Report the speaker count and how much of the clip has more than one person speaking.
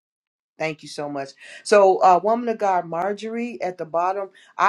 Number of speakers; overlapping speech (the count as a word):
one, no overlap